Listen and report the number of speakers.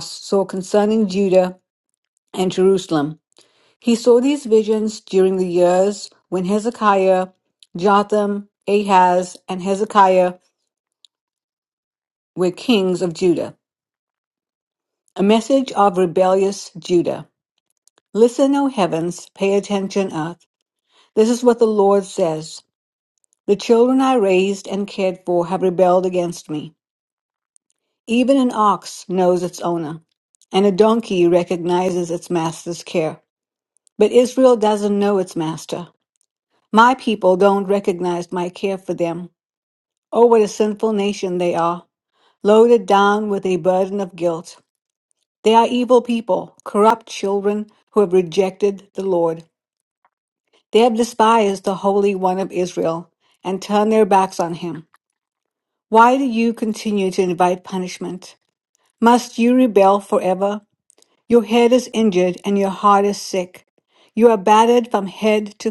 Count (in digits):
1